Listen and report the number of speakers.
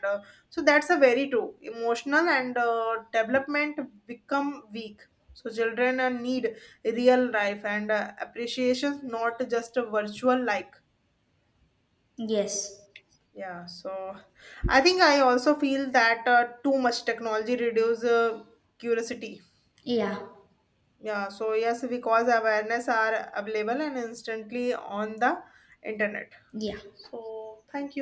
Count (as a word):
two